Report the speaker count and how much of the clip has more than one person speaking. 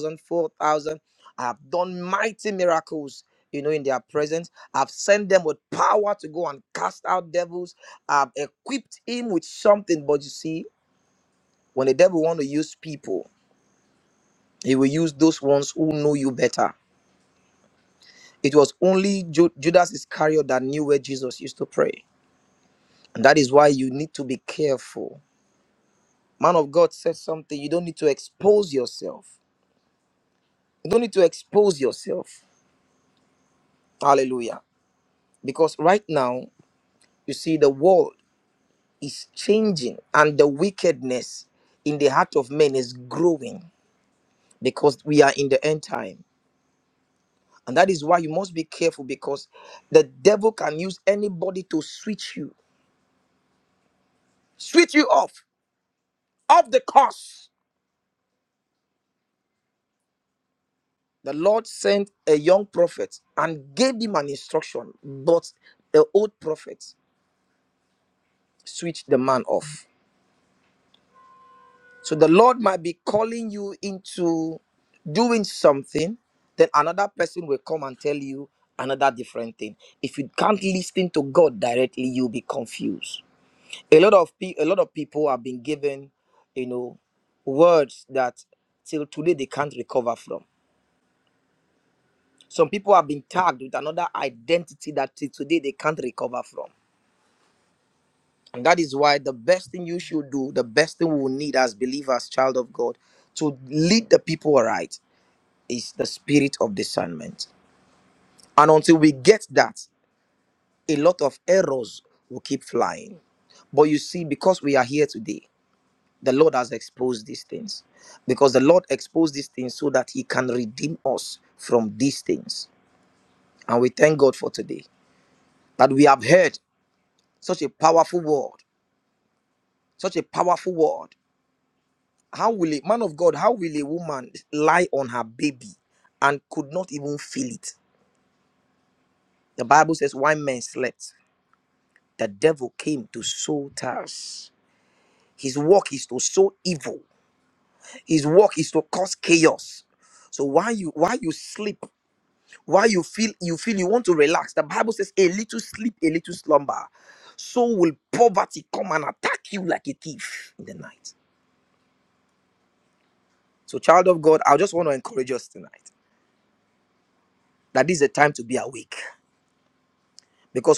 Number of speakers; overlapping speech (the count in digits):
1, no overlap